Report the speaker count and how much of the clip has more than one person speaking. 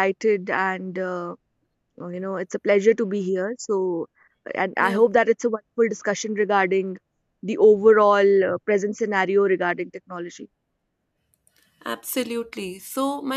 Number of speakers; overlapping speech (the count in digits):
2, about 1%